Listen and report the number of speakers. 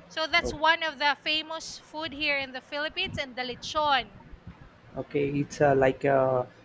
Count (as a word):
two